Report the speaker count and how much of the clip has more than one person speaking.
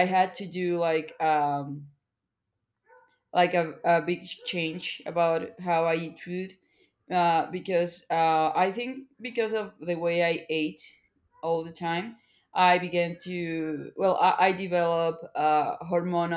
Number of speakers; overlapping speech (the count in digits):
1, no overlap